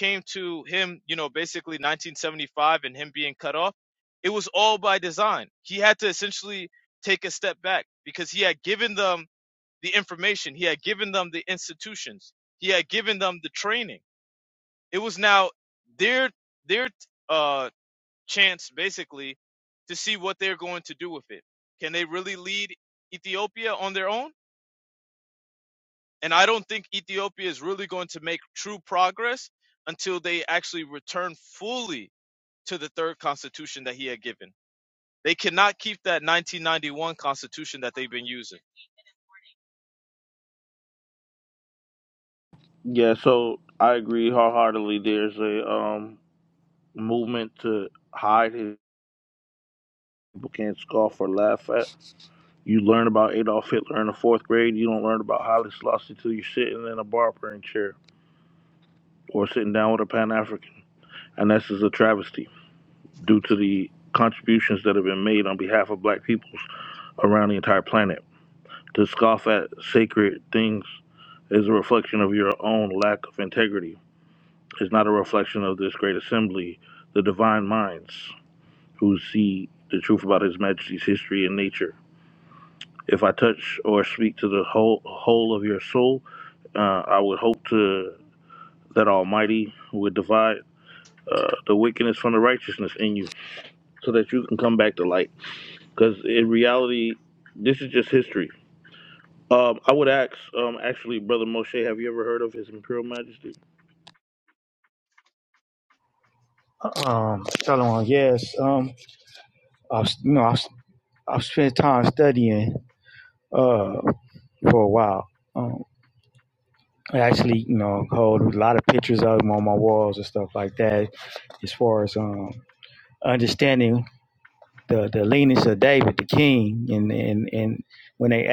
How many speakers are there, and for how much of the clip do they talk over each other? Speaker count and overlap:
3, no overlap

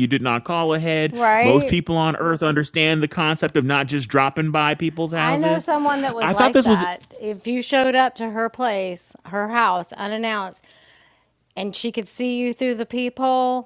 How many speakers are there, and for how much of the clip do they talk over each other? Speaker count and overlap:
2, about 13%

